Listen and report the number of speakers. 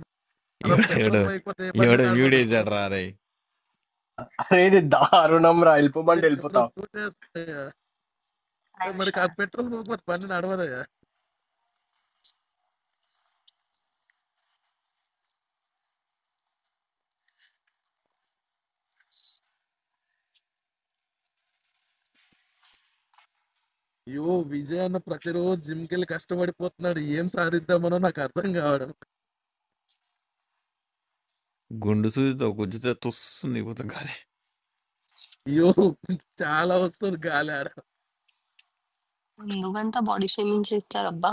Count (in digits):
4